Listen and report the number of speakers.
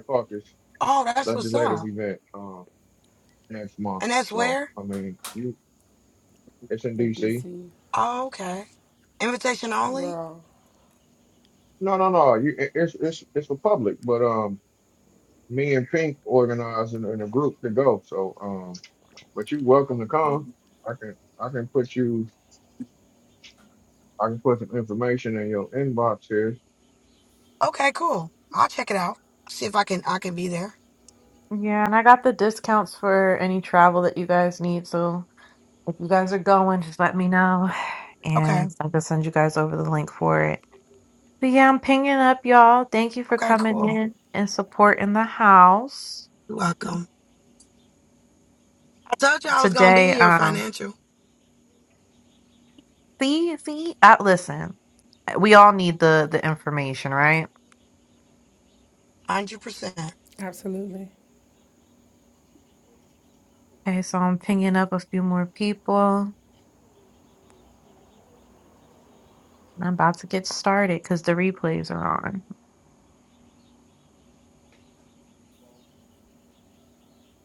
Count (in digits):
4